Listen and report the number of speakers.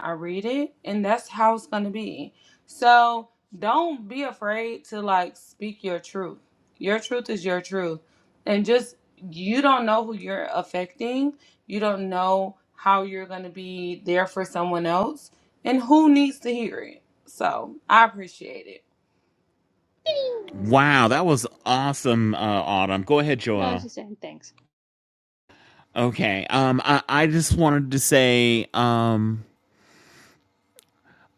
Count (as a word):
three